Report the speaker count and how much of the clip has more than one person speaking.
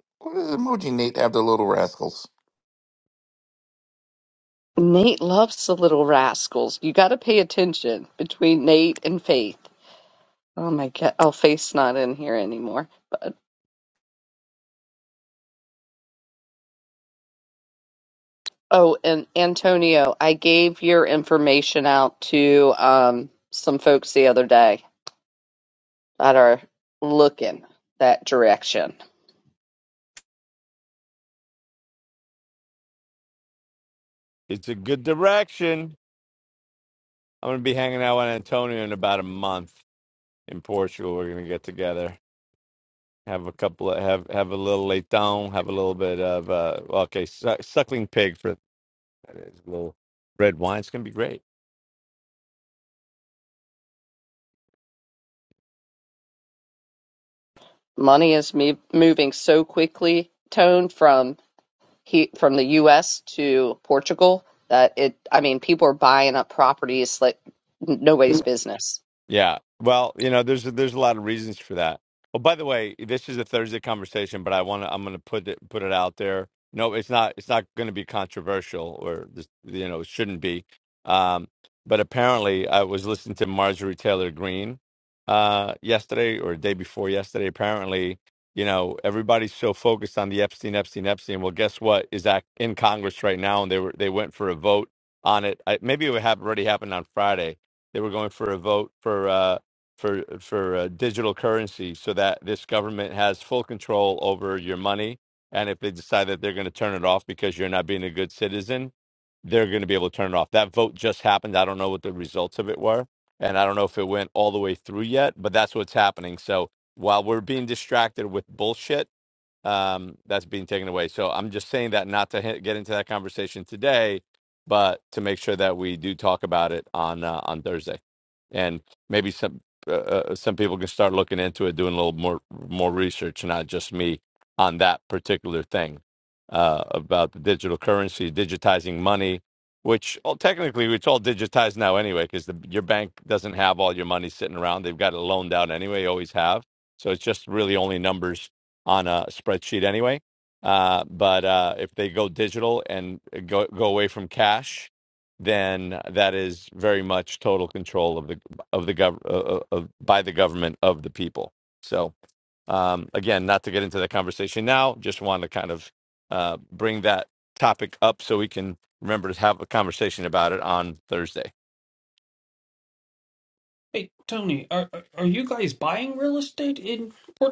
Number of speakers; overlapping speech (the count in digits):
4, no overlap